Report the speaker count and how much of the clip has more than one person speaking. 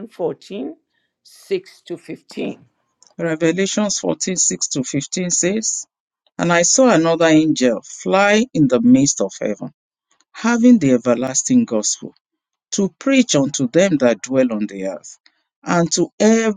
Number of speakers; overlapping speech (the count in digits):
2, no overlap